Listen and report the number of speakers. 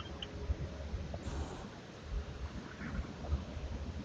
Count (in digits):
0